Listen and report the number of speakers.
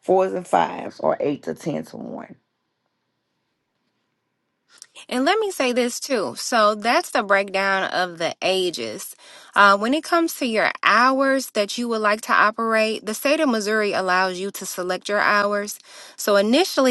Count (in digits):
2